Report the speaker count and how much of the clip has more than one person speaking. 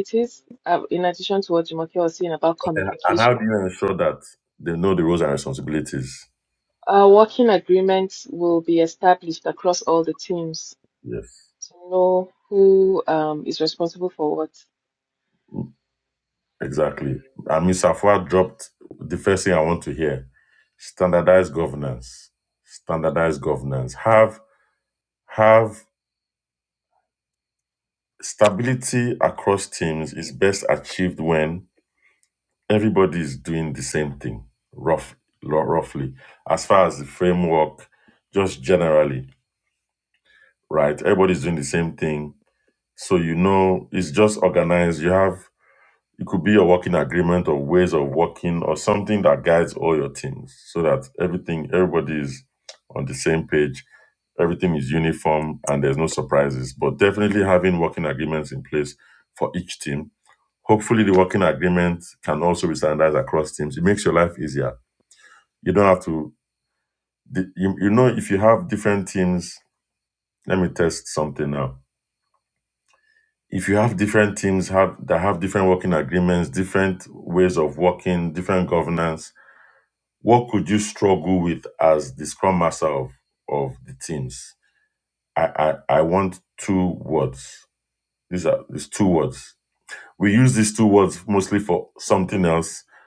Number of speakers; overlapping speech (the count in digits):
2, about 1%